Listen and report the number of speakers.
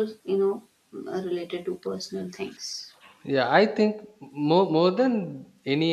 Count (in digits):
2